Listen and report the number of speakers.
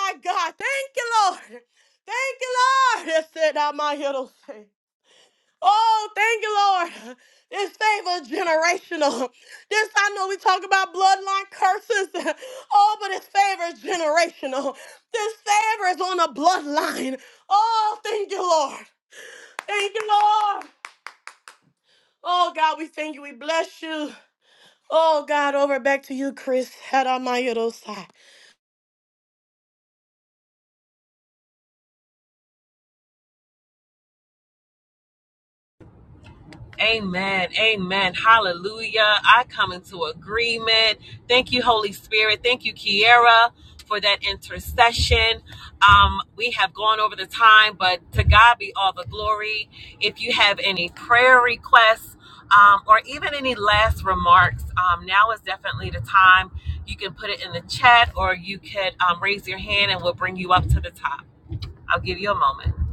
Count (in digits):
2